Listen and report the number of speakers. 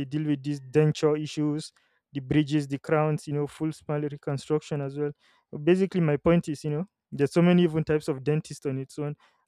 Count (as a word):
one